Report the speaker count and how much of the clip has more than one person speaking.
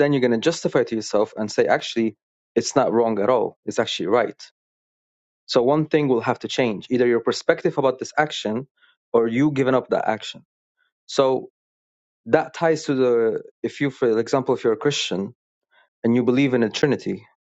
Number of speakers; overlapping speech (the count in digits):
1, no overlap